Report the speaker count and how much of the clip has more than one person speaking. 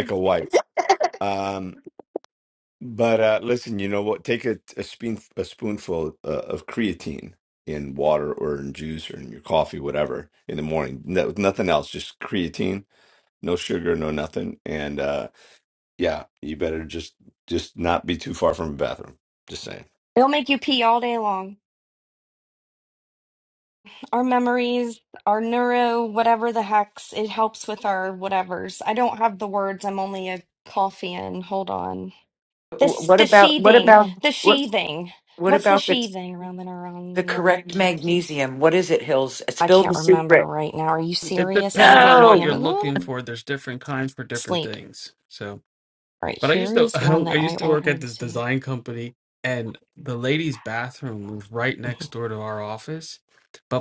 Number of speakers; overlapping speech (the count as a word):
four, about 14%